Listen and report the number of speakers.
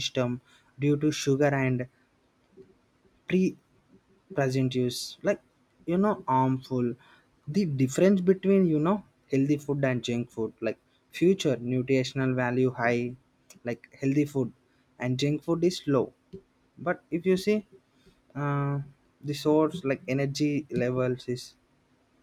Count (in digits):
1